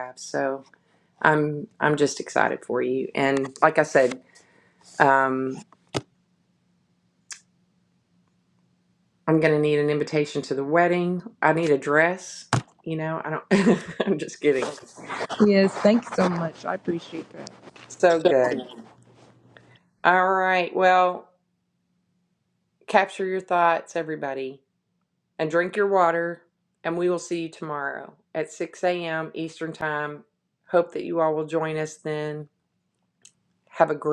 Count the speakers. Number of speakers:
two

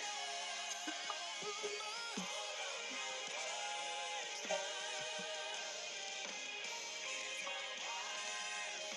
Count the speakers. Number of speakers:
zero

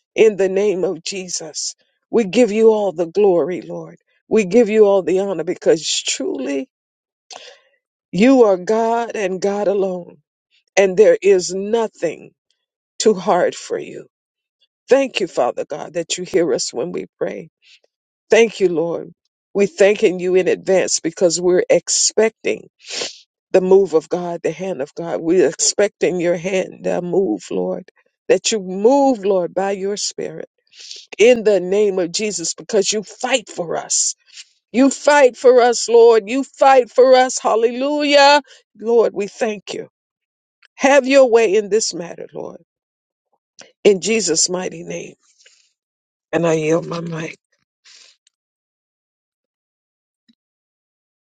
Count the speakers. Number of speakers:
one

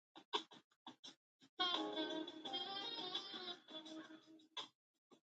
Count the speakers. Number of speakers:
zero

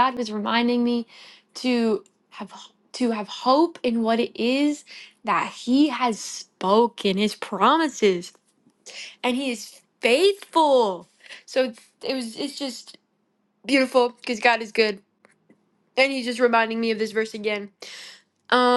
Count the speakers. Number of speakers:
one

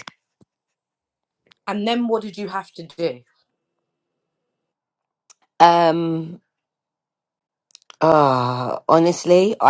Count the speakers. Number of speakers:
two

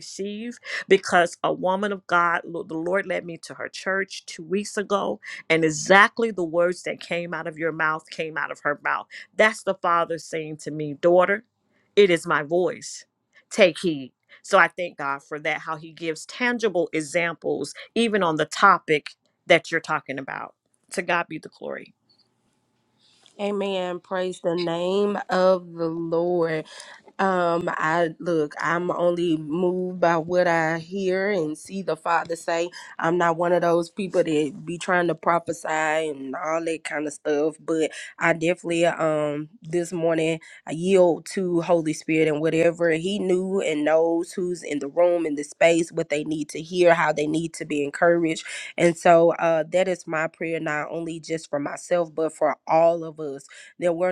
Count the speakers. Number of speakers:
two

